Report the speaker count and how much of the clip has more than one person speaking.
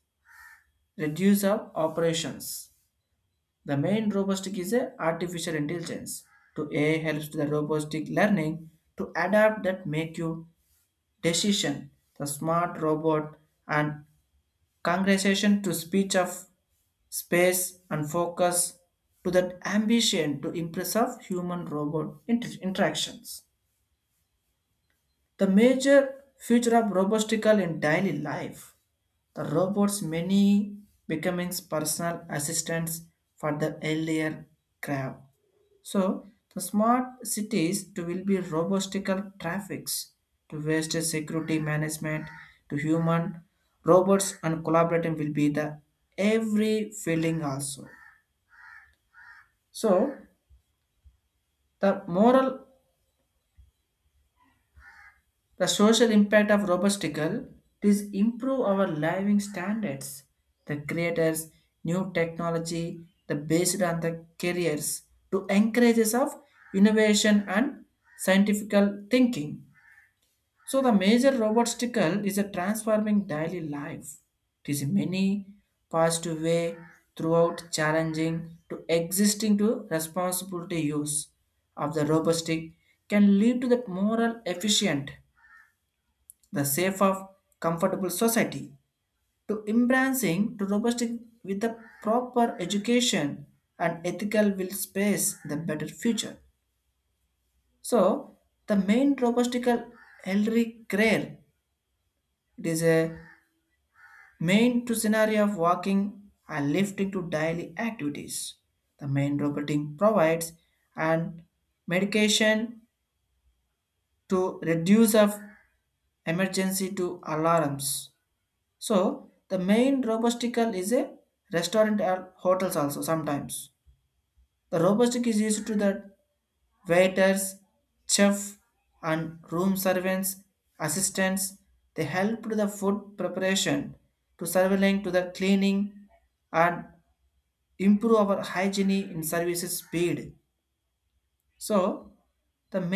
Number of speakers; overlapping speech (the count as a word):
one, no overlap